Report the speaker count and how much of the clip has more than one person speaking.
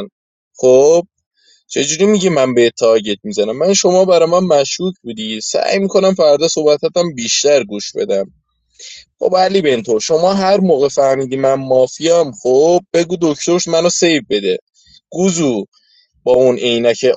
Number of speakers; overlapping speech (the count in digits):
1, no overlap